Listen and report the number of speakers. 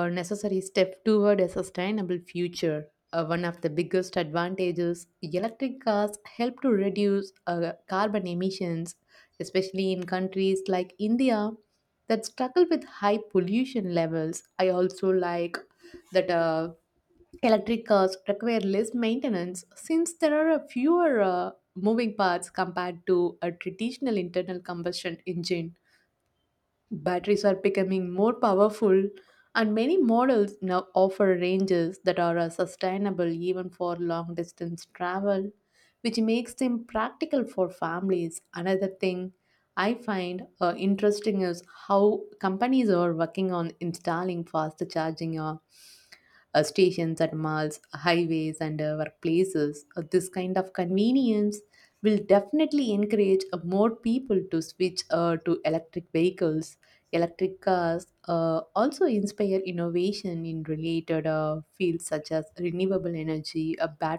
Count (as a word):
one